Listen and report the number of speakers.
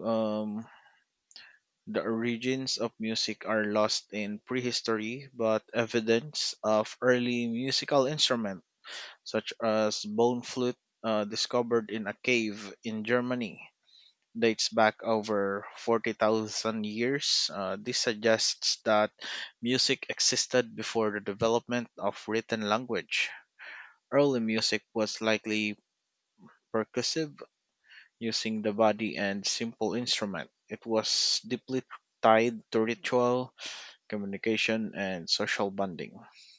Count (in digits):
1